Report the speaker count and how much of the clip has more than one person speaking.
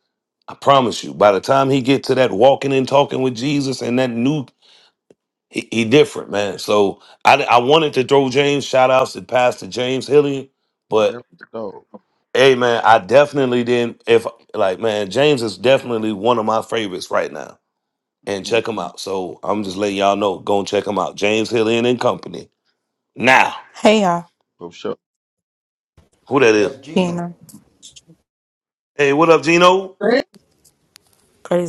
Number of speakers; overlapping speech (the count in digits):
3, about 1%